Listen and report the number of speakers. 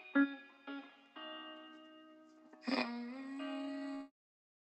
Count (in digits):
0